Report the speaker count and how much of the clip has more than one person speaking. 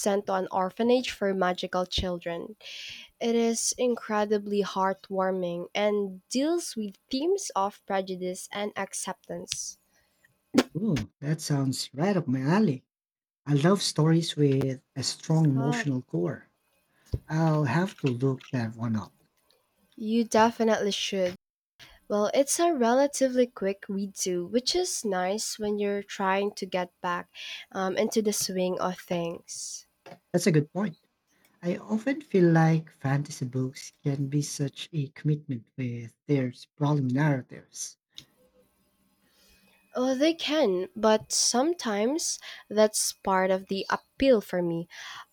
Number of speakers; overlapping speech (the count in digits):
2, about 1%